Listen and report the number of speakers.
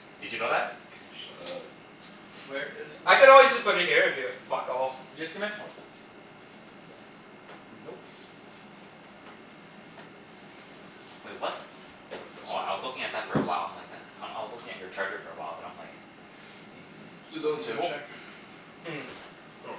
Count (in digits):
4